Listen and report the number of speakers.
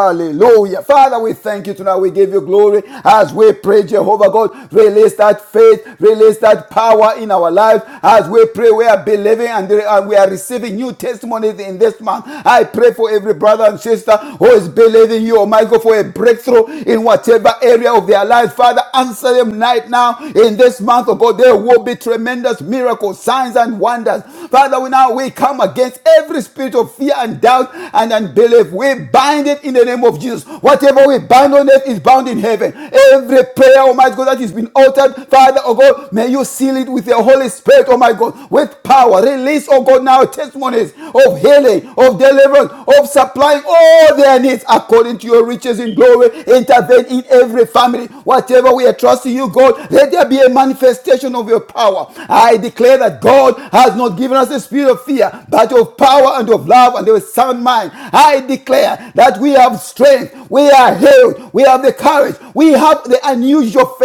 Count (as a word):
one